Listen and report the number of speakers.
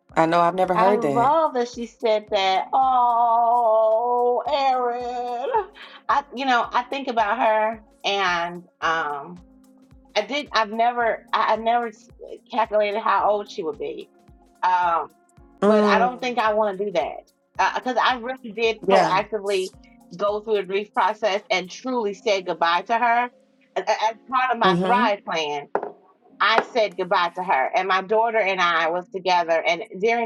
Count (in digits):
2